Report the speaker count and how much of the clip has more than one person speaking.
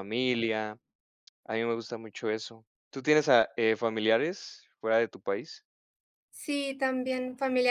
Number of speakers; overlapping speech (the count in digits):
2, no overlap